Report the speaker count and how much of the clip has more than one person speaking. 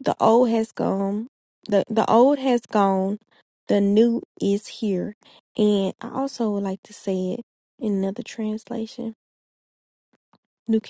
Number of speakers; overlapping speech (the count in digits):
1, no overlap